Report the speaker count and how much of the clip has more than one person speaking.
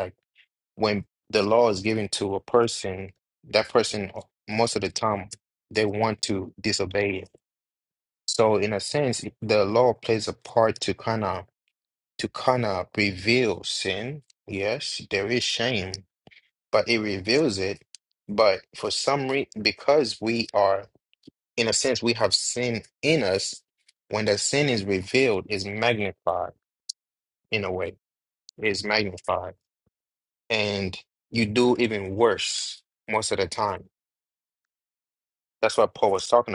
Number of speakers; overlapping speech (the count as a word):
one, no overlap